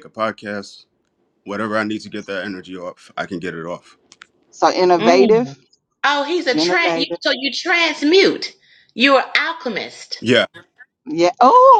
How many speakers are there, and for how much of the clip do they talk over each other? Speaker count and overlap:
three, about 10%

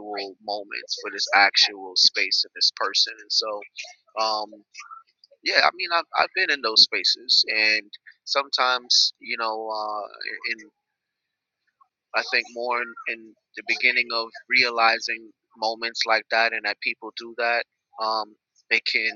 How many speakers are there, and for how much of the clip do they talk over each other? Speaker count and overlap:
one, no overlap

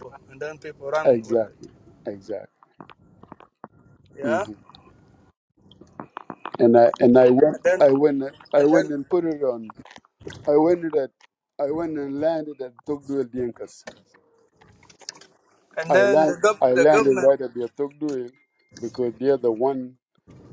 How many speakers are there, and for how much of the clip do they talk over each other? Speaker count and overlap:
two, about 14%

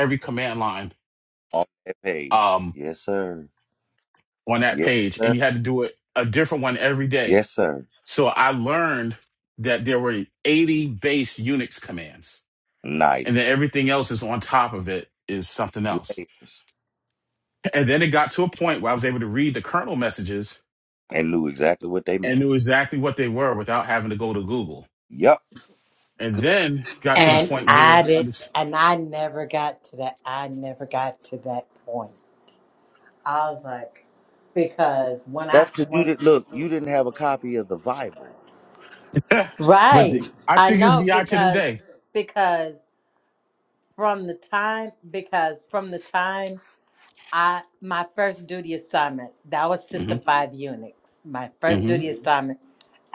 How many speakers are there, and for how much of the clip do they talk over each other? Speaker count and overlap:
three, about 11%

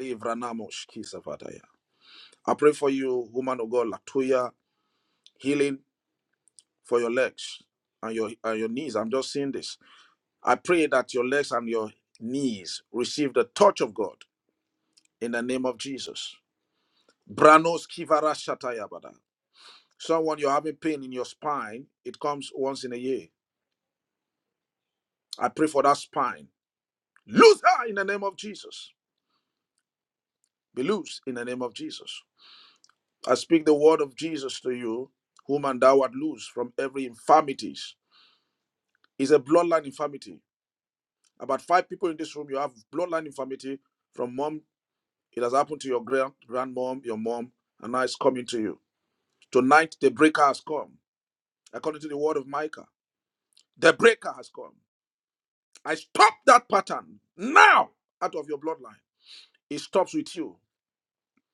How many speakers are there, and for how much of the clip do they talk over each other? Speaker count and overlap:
one, no overlap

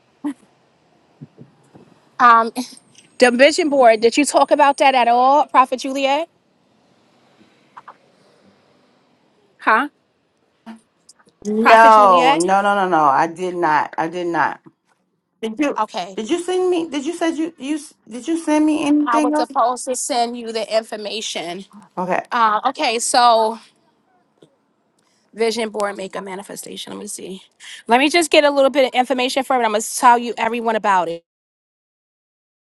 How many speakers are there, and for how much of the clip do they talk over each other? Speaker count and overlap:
two, about 4%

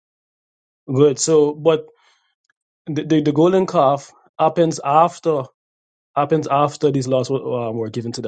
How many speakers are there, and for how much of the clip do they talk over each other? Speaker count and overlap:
one, no overlap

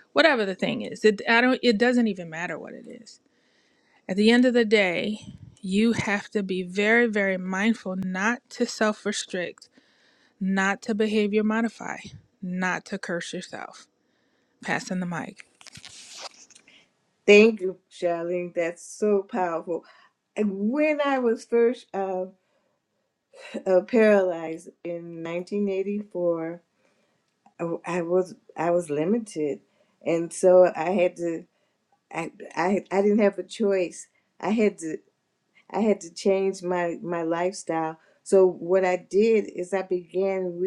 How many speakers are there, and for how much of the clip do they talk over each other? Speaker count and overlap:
two, no overlap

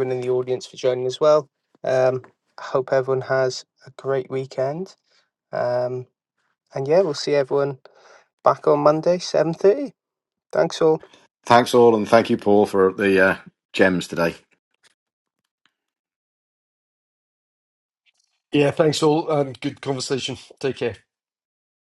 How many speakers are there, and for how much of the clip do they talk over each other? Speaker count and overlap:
three, no overlap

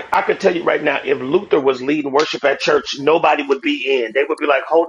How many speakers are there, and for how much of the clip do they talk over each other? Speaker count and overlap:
one, no overlap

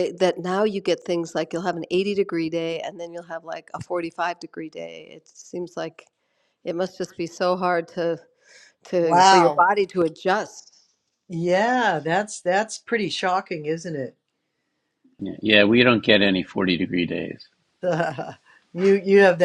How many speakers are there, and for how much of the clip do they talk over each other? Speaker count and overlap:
three, about 3%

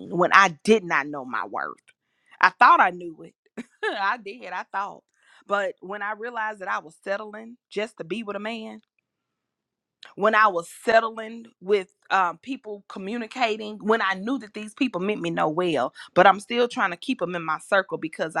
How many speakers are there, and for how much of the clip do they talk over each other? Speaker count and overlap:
one, no overlap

